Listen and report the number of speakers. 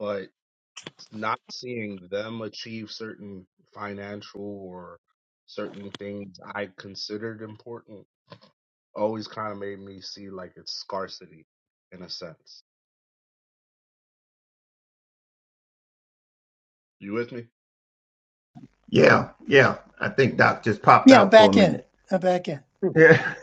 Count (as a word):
three